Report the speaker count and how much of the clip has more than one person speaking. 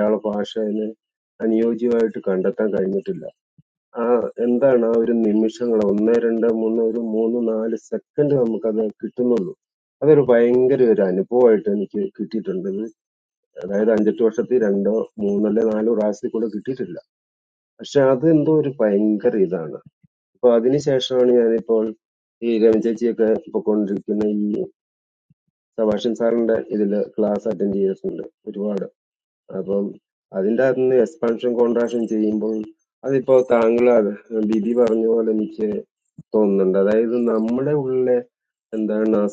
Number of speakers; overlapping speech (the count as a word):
one, no overlap